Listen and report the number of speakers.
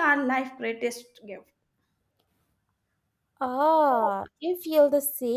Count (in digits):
2